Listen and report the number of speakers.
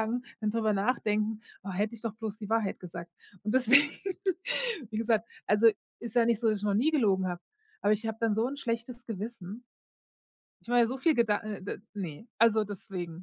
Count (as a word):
one